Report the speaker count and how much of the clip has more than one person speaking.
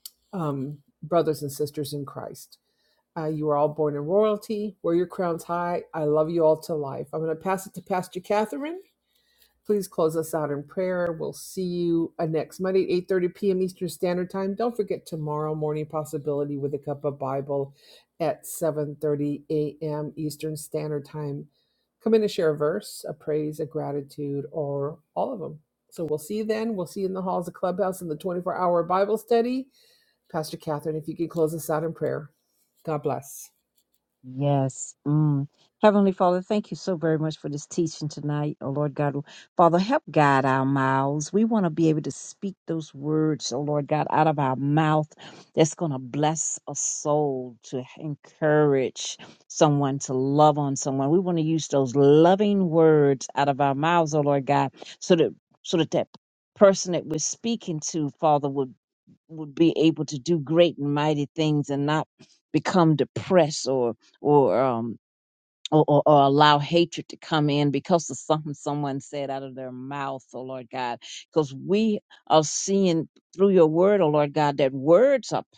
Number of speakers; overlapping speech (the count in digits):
2, no overlap